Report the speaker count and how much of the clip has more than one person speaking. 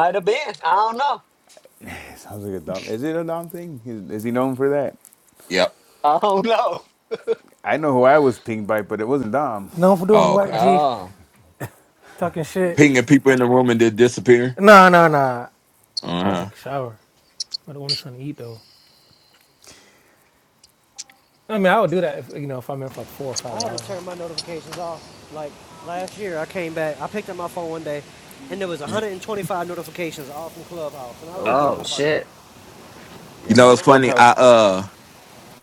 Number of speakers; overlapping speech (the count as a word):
five, about 8%